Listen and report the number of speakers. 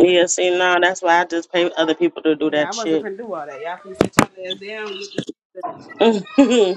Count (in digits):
2